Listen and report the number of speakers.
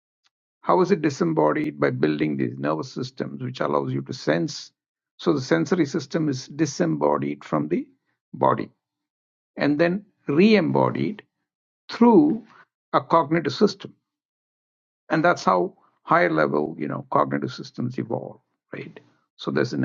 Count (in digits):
1